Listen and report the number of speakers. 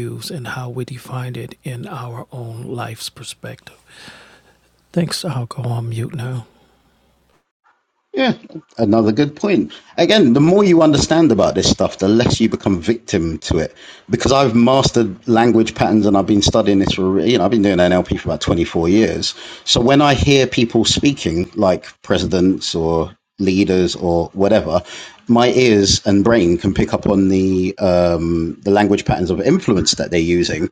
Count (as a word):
two